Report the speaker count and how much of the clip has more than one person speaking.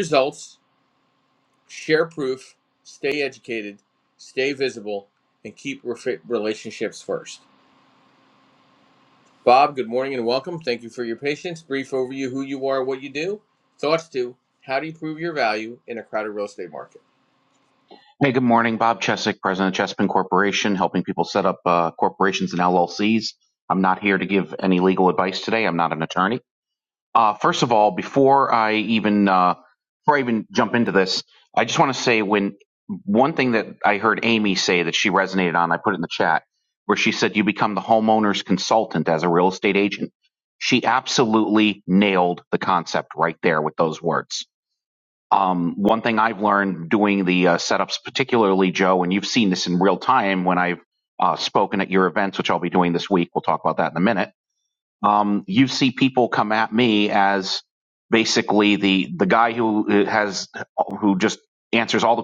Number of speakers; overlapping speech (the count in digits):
2, no overlap